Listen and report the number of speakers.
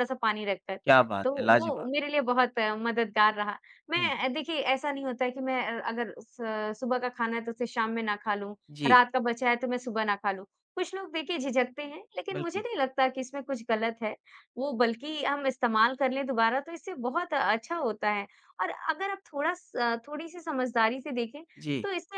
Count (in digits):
2